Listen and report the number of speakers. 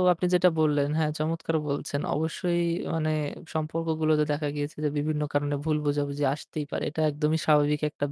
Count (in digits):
1